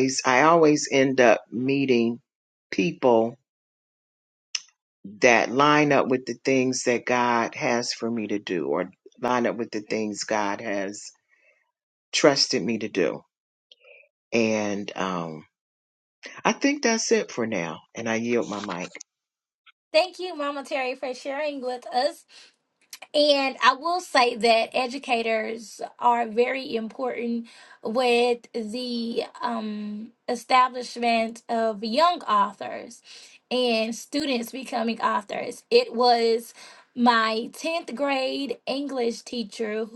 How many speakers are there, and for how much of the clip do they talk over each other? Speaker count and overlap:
two, no overlap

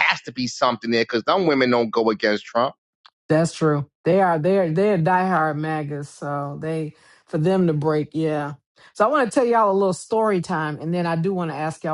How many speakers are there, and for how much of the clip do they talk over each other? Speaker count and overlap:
two, no overlap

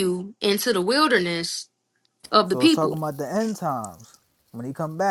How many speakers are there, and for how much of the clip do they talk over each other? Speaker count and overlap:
two, about 8%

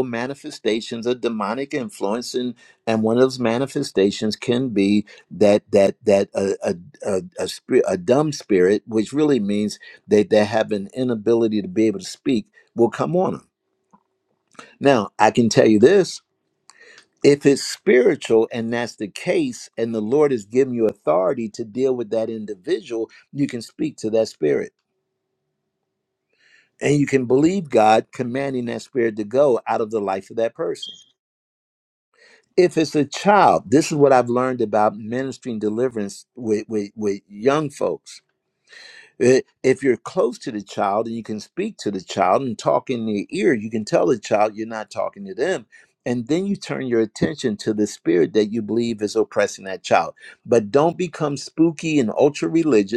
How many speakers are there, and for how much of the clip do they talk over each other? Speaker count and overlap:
one, no overlap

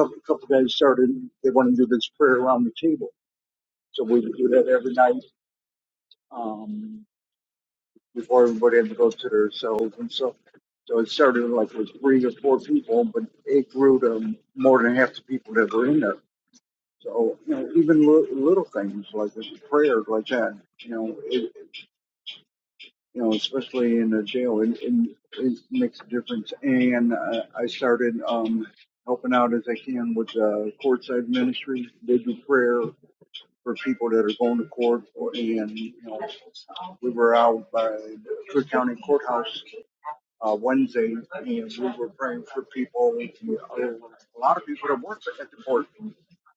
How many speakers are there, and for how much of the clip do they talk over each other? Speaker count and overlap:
one, no overlap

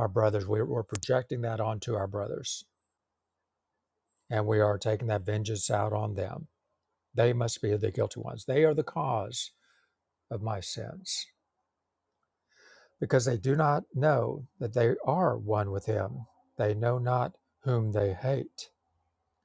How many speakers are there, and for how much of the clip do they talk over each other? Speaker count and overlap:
one, no overlap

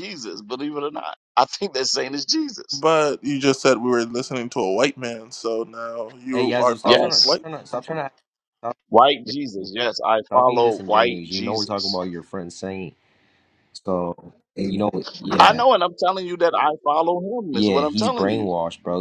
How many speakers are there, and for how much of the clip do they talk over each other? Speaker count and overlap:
three, about 24%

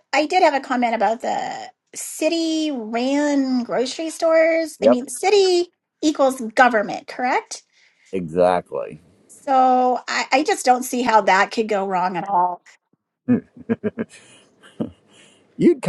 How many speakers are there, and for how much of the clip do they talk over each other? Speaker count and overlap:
two, about 1%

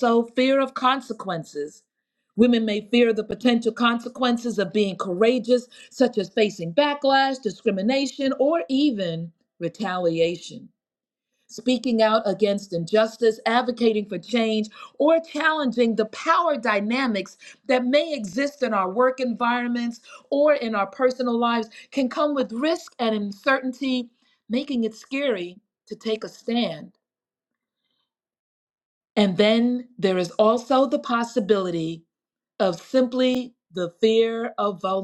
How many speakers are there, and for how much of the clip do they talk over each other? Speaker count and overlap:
one, no overlap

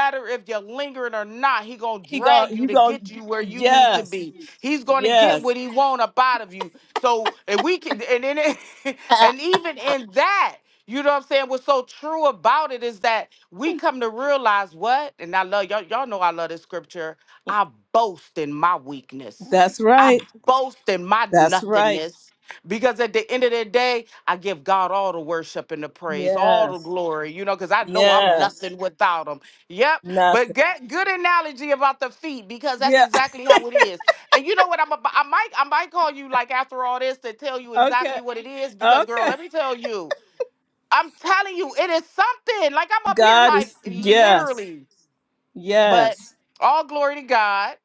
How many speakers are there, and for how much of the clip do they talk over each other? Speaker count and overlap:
two, about 15%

